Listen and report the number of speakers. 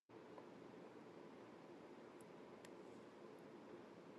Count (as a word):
zero